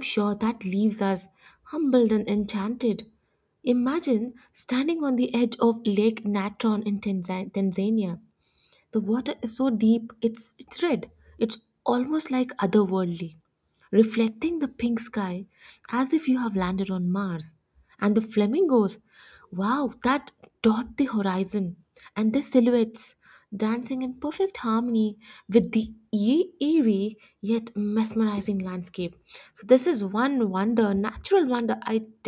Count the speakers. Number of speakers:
1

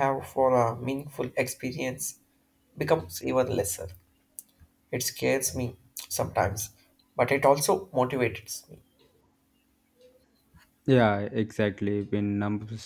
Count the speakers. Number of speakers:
2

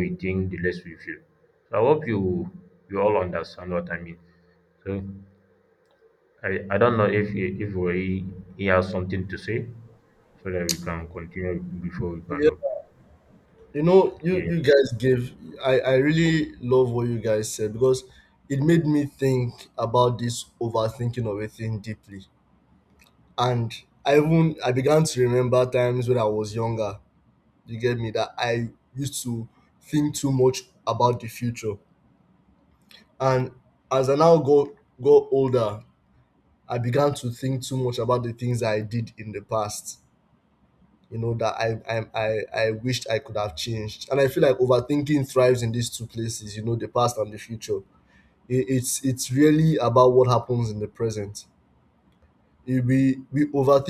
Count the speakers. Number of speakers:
2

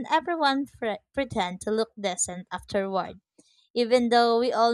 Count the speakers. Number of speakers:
1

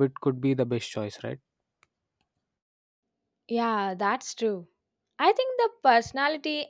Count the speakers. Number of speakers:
2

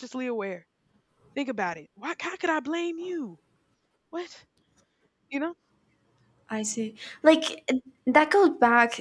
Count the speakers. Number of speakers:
2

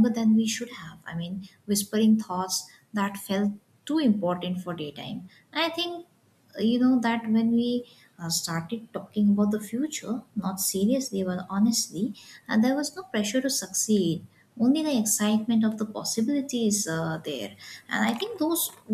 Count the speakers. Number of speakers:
1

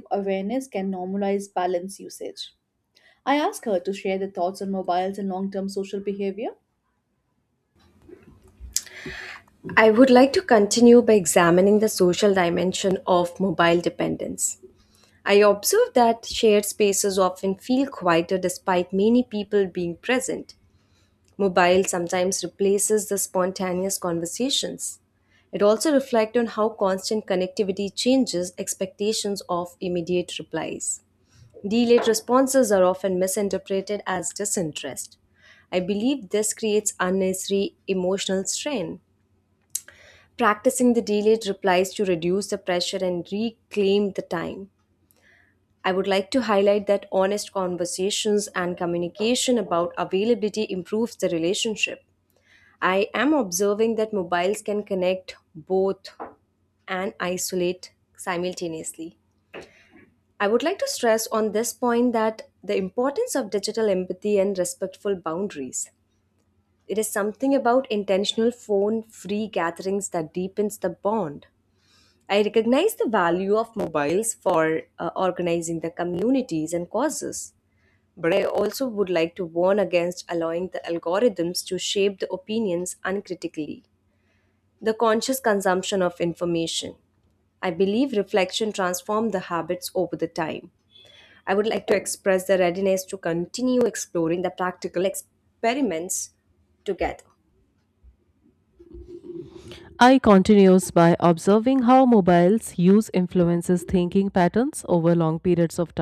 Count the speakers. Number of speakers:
3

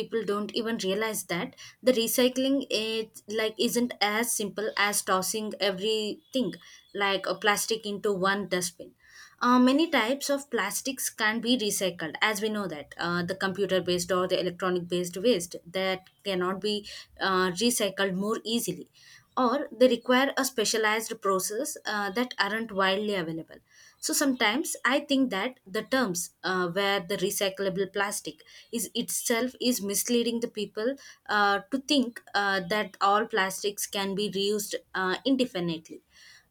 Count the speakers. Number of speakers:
1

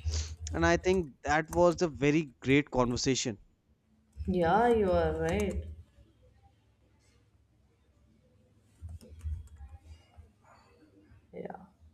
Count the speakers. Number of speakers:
2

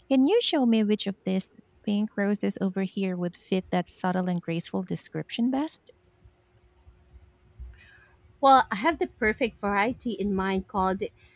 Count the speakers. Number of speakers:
2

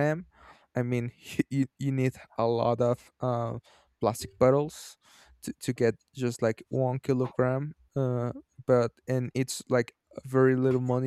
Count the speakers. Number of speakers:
1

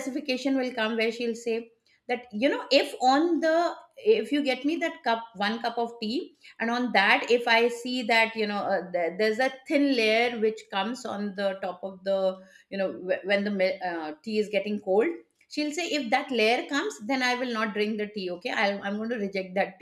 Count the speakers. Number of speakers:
1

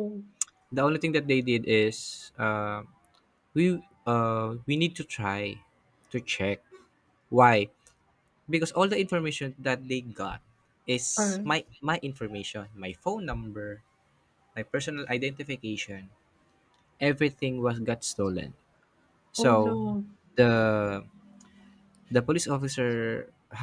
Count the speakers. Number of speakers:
2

